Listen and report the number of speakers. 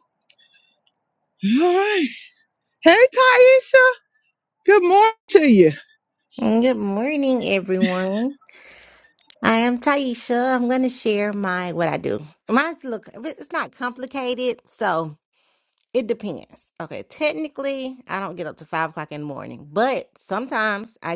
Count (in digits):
2